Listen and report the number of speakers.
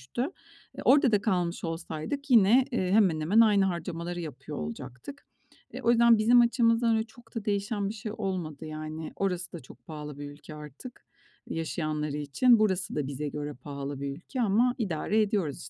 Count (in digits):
1